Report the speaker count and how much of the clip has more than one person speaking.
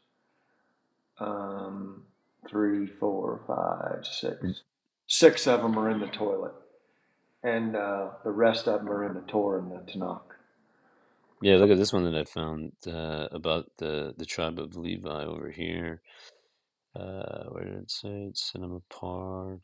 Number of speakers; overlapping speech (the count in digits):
2, no overlap